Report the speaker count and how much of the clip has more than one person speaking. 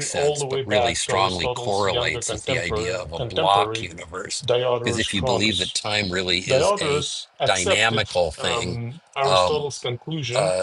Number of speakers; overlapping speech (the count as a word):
two, about 68%